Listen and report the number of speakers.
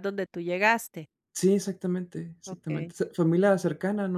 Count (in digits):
2